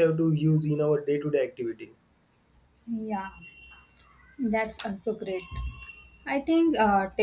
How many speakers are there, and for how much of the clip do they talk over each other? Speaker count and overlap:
two, no overlap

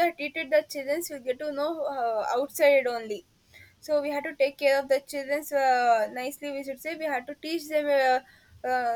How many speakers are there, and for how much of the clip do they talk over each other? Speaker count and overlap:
one, no overlap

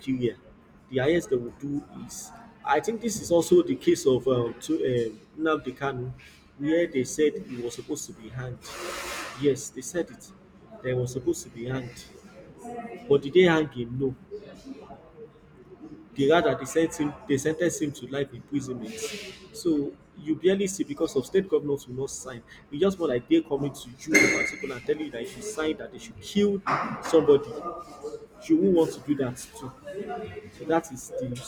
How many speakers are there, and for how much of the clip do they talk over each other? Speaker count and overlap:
one, no overlap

